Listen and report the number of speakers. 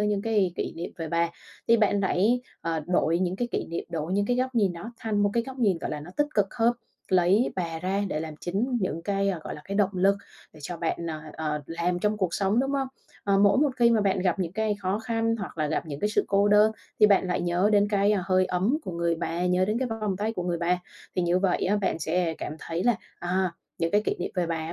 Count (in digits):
1